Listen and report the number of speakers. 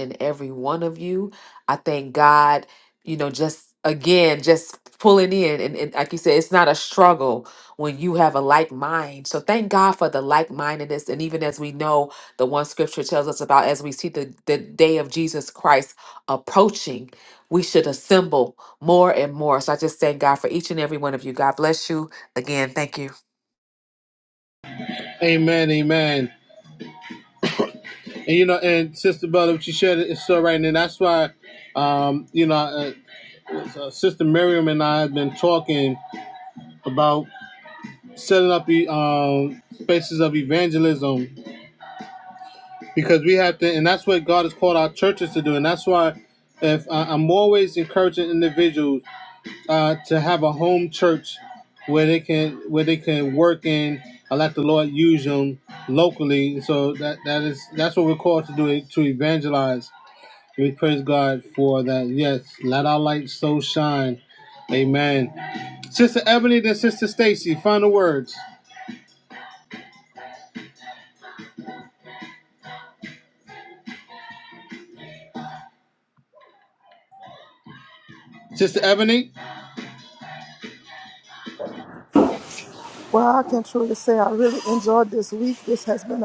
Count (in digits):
3